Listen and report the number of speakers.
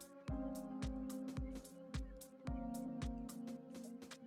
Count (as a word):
zero